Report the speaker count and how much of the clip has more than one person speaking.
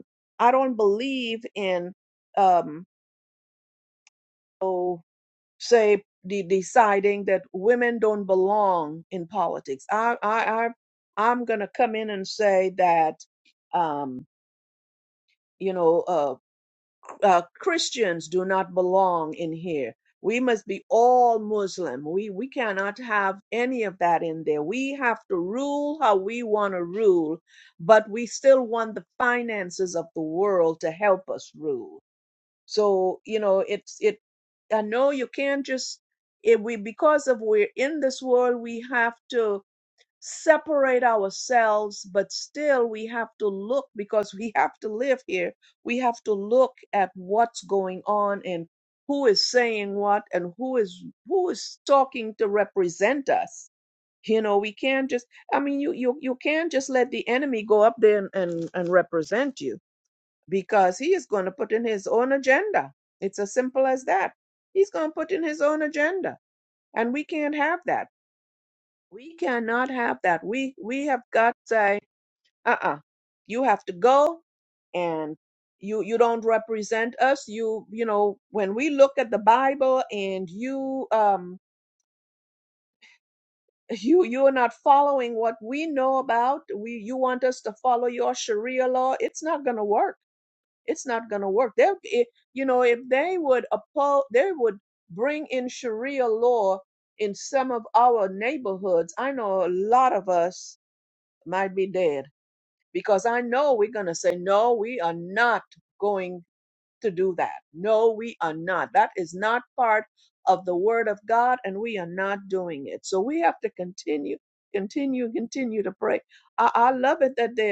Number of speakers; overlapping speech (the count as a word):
one, no overlap